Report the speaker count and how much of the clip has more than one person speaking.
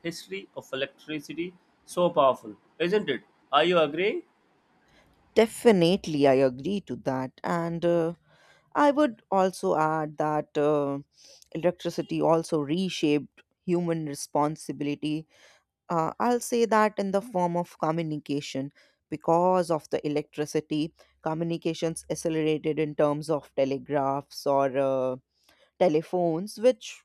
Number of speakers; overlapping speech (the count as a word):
two, no overlap